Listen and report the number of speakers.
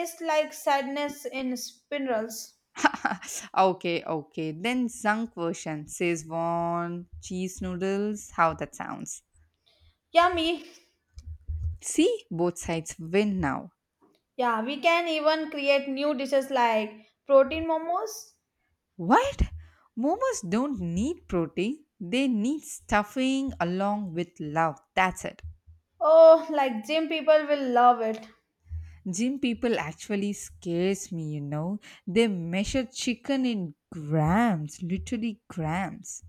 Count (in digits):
2